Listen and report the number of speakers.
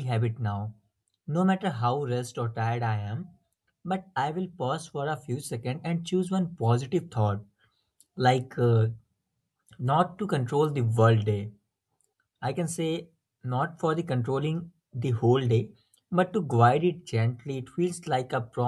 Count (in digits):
1